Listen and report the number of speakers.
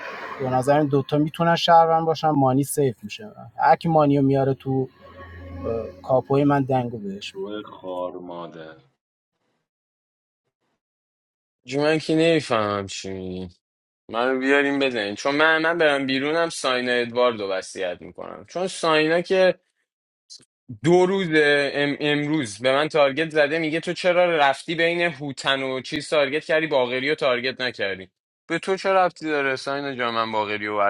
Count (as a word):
three